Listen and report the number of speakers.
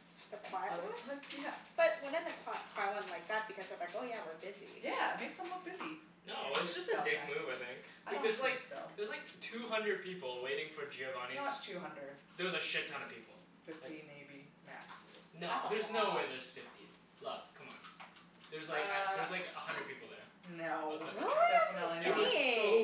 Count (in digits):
3